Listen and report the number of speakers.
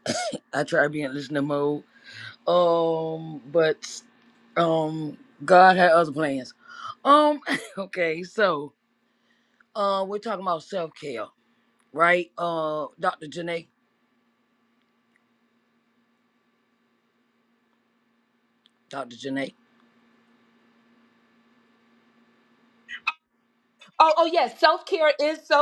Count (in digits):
2